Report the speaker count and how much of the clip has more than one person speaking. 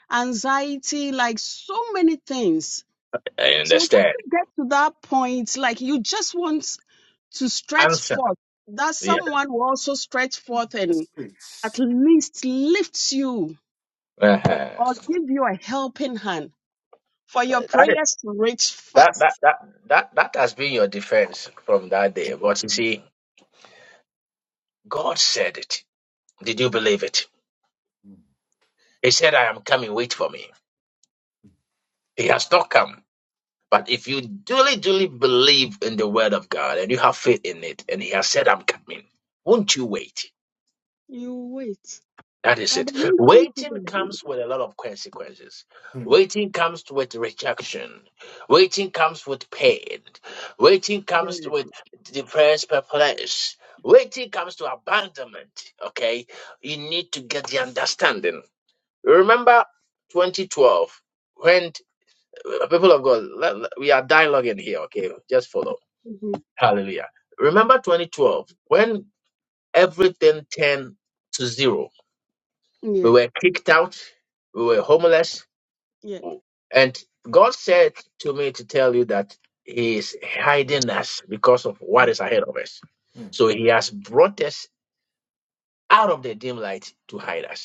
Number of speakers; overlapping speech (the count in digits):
3, about 5%